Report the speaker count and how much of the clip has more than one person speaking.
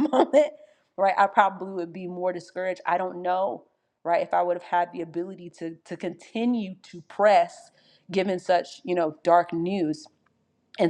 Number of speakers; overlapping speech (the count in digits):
1, no overlap